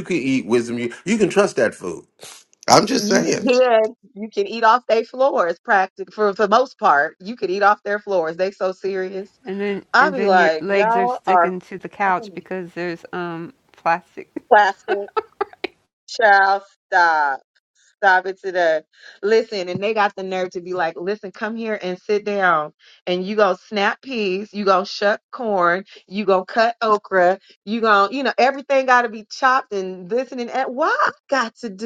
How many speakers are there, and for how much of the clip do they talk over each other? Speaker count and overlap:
3, about 8%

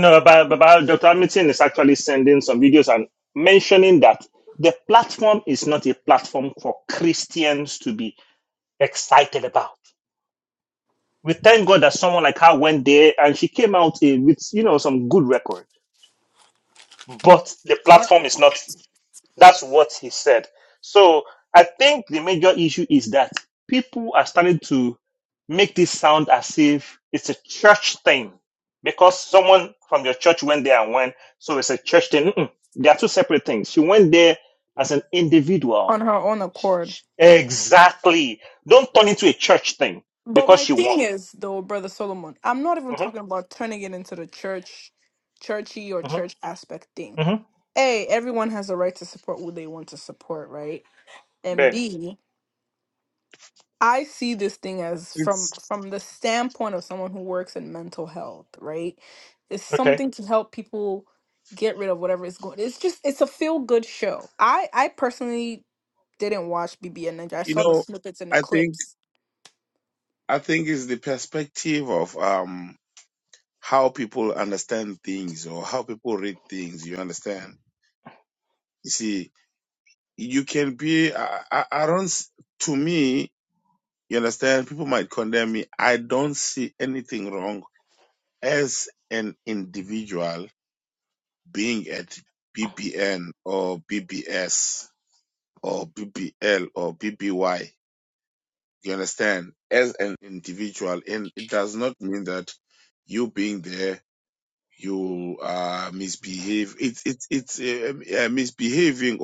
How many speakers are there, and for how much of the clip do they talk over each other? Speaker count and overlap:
3, about 2%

